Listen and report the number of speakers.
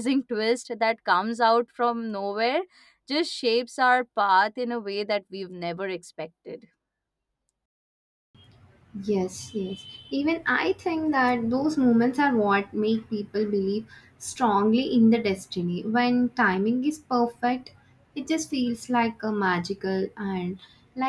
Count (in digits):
2